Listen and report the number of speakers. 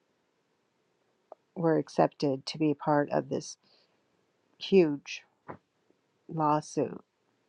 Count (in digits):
1